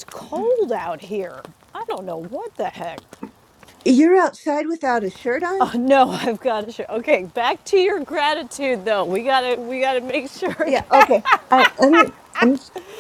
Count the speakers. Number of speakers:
two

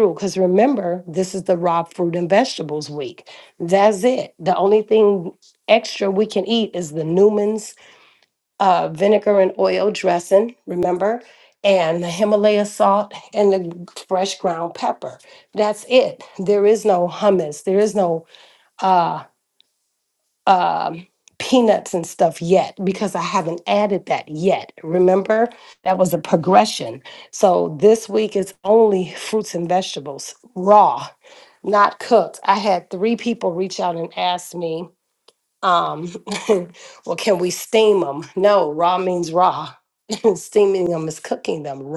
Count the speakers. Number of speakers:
one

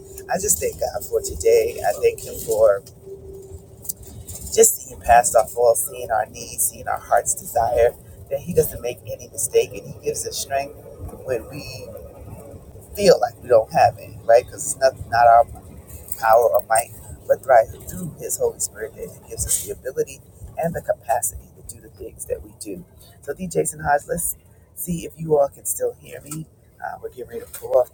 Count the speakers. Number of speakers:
one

